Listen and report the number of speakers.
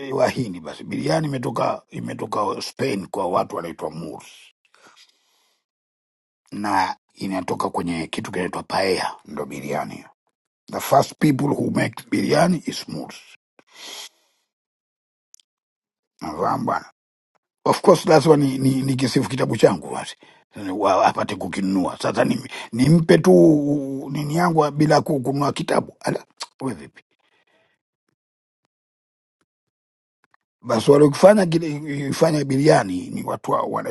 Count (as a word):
one